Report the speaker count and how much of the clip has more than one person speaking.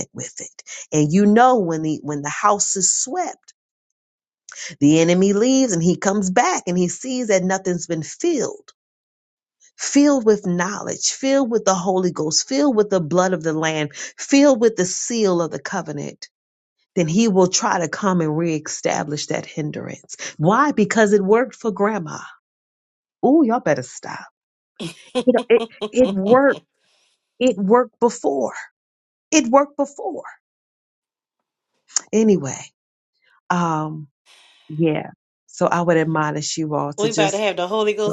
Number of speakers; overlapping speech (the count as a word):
two, about 1%